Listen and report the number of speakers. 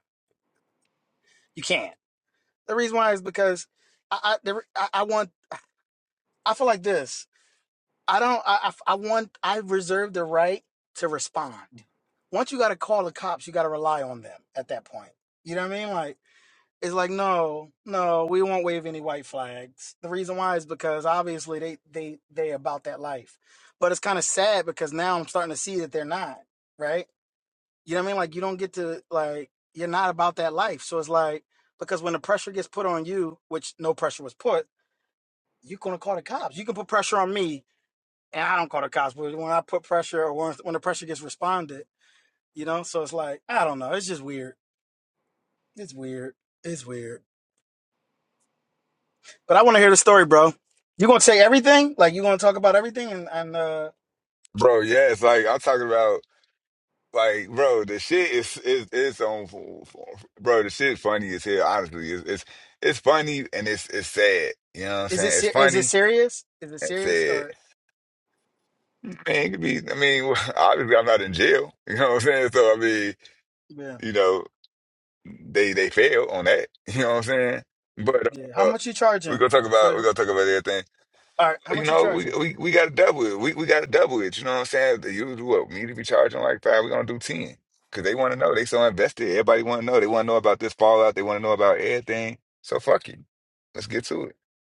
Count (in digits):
2